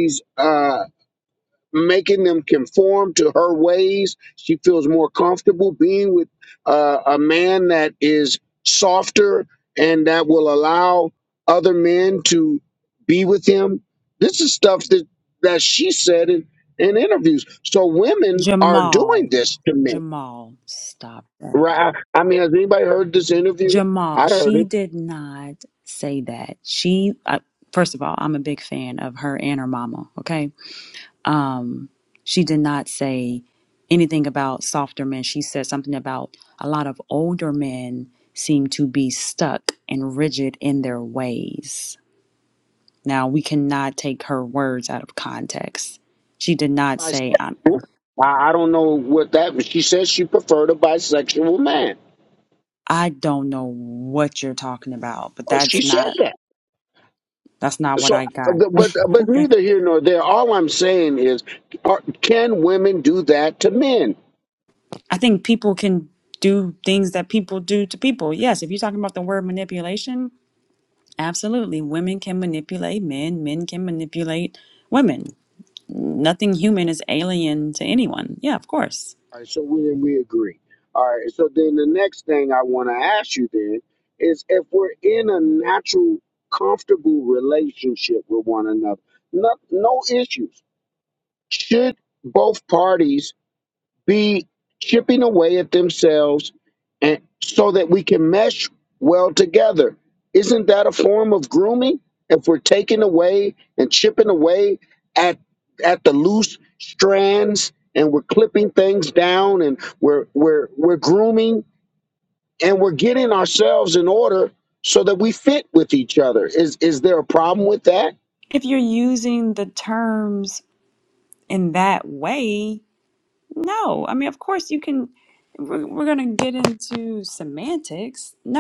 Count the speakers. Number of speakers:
2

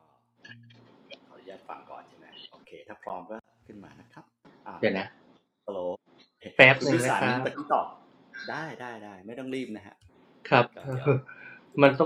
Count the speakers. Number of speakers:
2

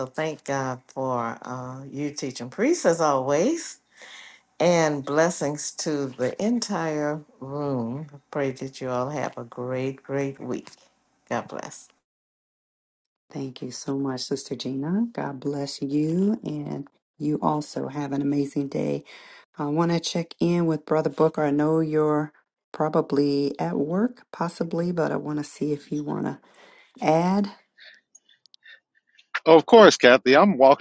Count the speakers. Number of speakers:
3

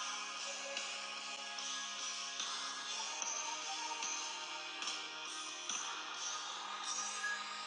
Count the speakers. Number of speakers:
0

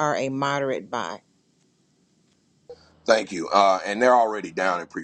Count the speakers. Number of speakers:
2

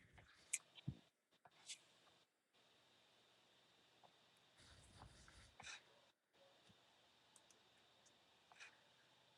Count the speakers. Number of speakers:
0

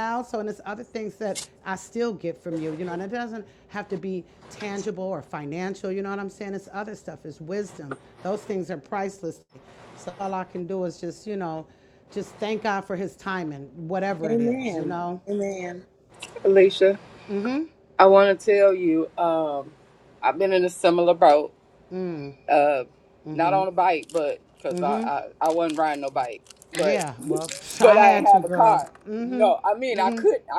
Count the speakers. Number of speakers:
3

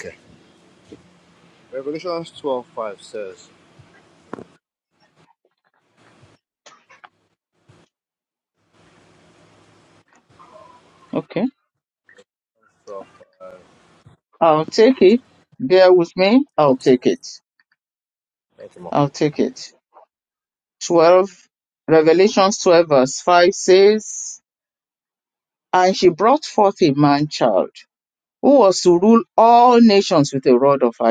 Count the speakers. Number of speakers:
2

